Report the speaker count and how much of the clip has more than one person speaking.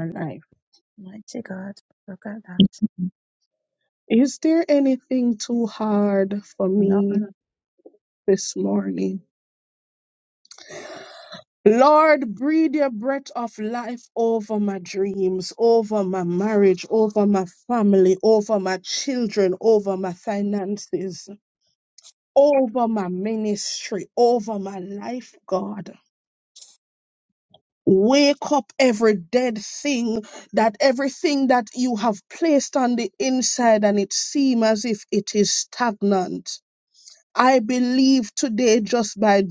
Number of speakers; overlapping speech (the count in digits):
2, about 1%